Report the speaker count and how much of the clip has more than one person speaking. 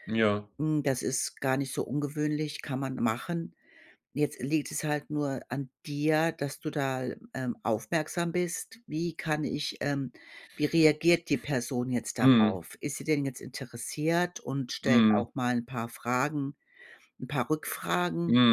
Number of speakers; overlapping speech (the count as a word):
two, about 5%